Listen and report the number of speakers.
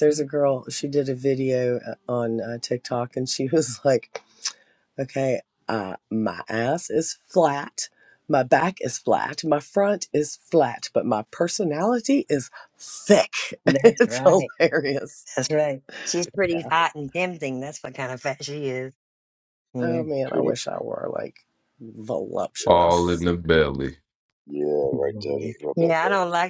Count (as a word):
four